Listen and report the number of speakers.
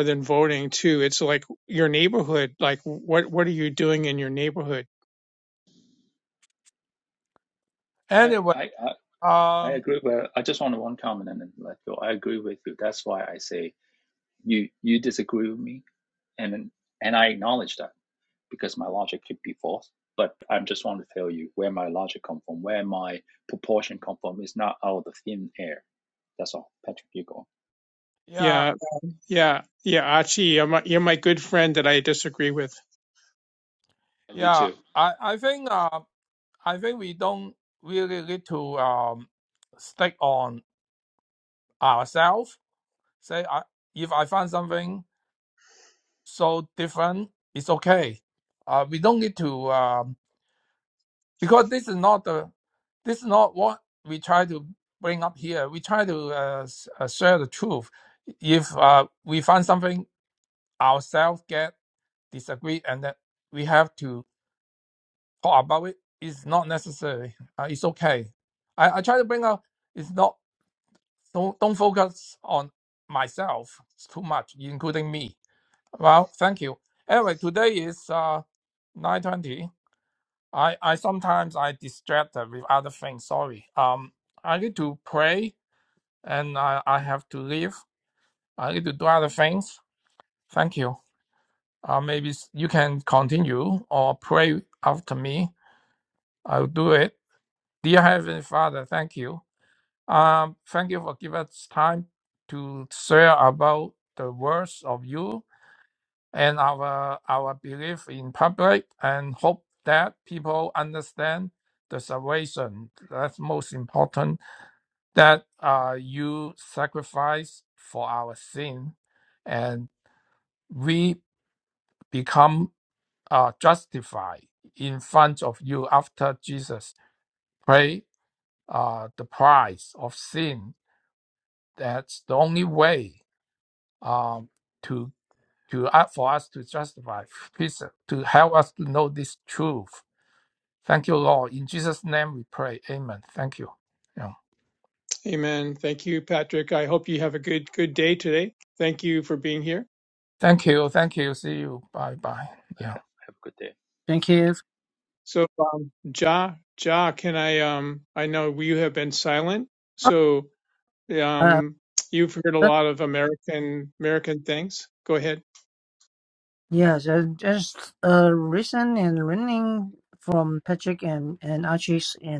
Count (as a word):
four